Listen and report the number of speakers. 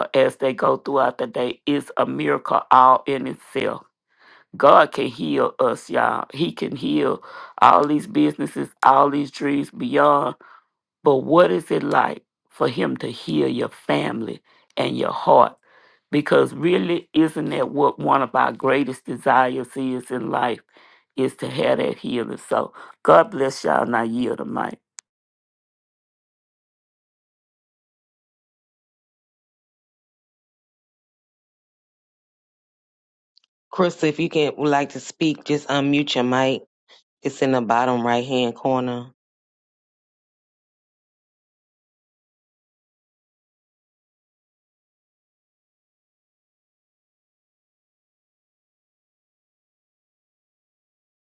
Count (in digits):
2